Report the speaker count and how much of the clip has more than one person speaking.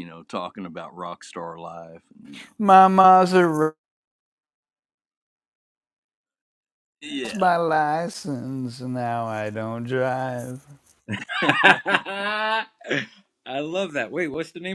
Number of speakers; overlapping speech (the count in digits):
3, about 1%